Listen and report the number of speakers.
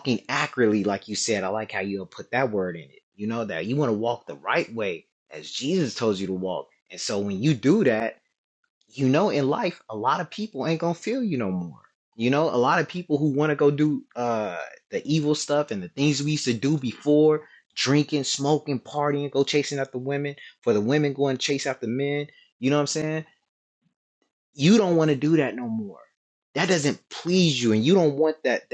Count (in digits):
1